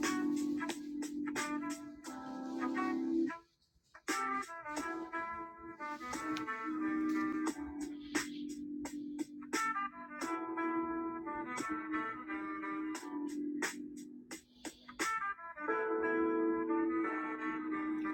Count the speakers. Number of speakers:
0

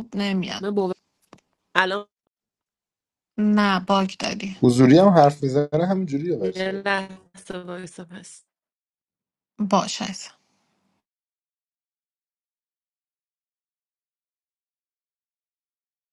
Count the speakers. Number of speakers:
3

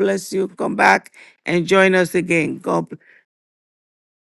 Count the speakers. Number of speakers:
1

